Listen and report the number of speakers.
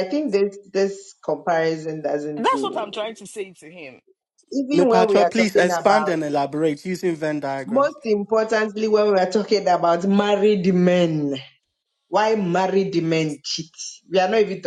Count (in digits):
3